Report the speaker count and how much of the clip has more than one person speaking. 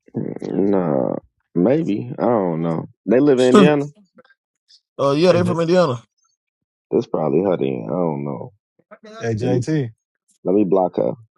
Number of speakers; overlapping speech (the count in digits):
3, about 7%